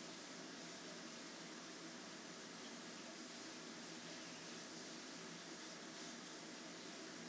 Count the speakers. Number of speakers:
zero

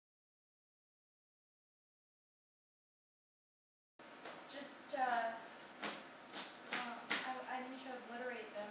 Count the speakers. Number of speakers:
one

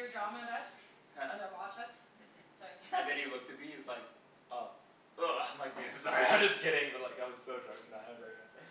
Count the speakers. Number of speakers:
two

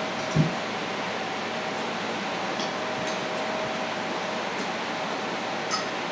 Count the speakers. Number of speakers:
zero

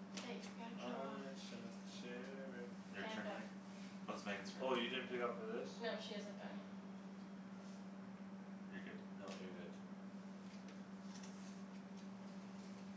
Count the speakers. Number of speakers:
three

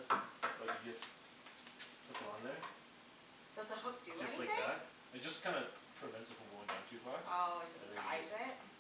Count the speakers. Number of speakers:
two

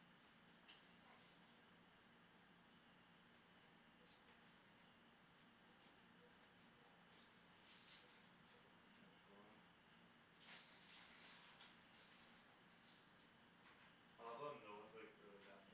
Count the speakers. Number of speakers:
one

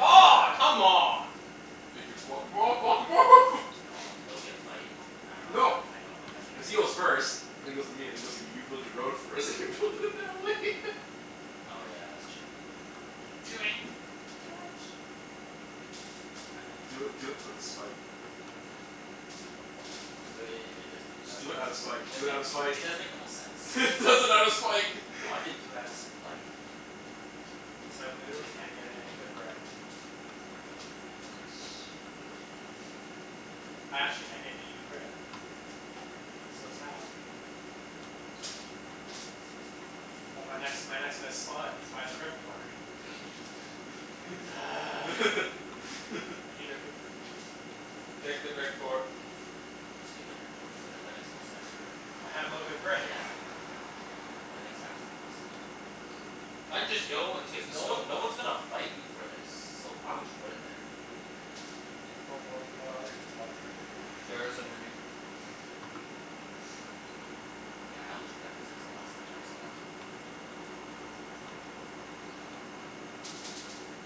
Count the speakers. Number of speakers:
four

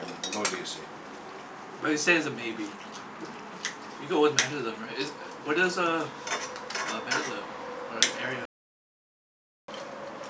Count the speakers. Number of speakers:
two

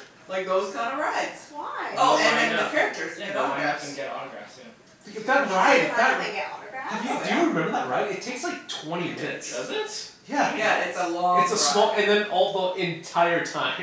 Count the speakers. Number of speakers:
four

